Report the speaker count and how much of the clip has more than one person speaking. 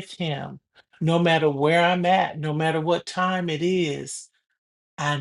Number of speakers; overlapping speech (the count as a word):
one, no overlap